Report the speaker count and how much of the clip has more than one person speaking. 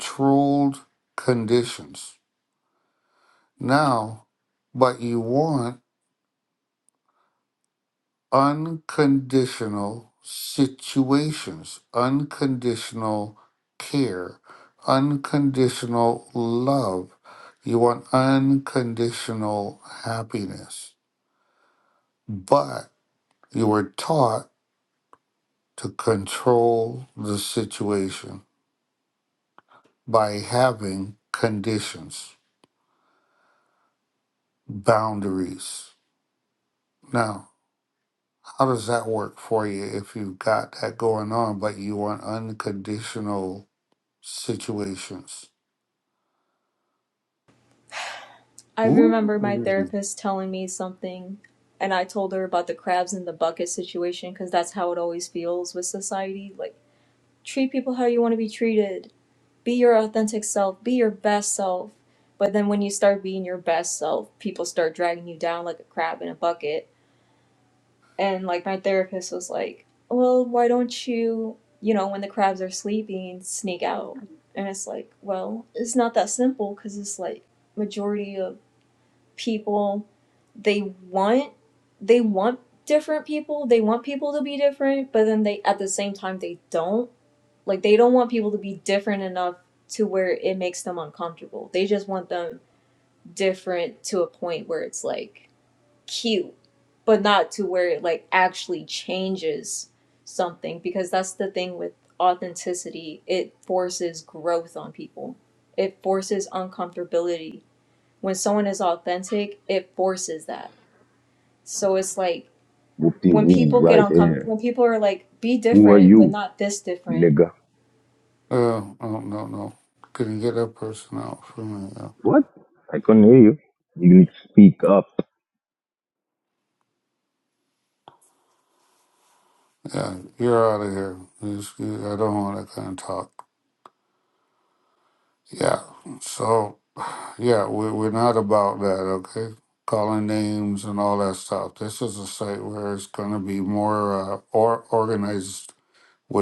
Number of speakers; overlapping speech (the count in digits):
3, about 2%